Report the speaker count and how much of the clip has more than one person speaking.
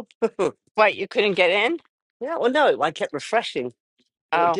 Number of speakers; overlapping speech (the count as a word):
two, about 5%